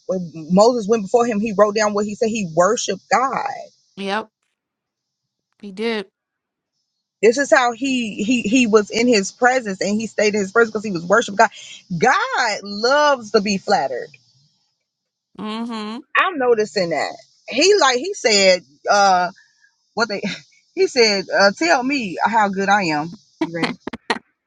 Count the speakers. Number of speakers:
2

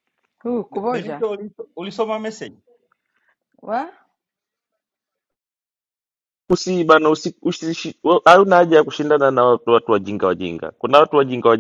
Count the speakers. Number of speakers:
3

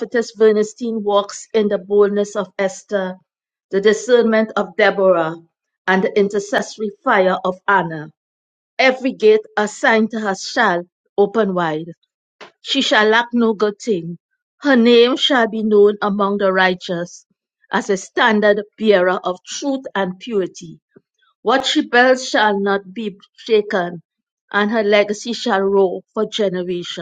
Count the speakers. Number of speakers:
1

